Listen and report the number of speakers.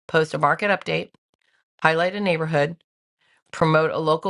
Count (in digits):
1